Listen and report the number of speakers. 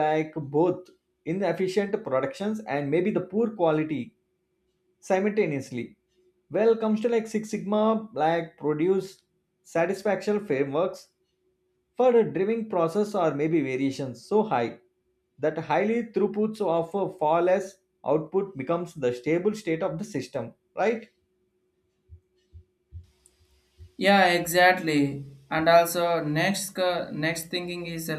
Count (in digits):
2